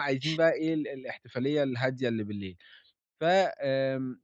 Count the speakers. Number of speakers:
1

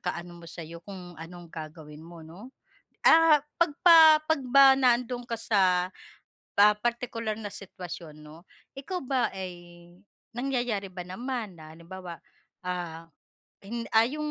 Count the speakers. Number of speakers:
1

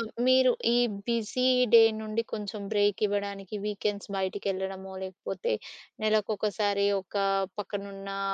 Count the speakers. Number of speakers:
1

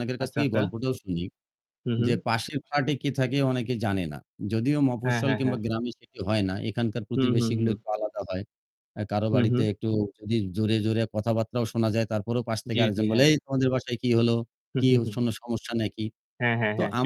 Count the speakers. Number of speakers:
2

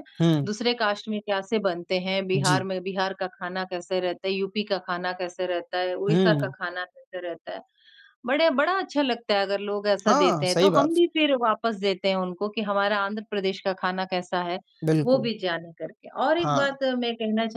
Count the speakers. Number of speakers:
2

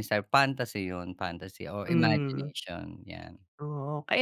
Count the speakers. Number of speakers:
2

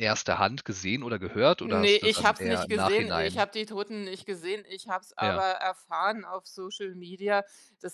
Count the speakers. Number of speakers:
2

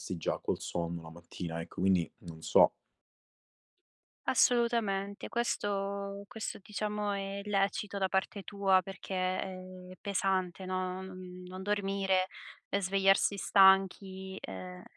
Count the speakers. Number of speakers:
2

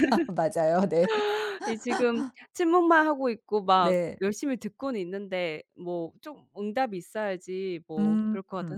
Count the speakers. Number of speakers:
2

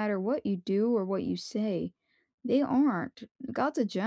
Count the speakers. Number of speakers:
1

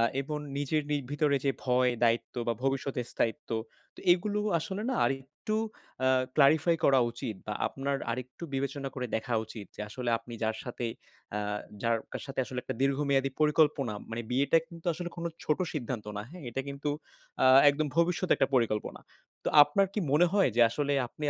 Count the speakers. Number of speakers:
1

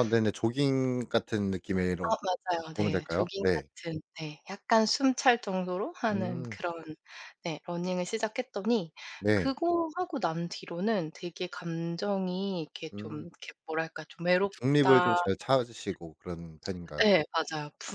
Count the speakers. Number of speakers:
2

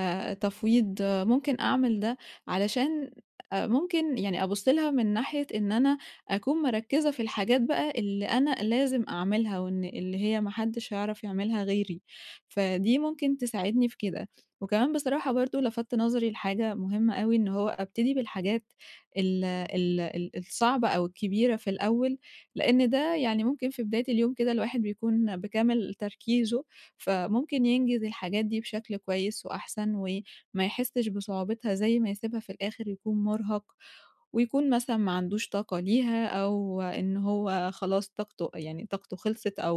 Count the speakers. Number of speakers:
1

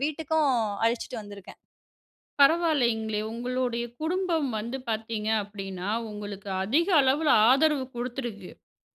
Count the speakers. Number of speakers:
2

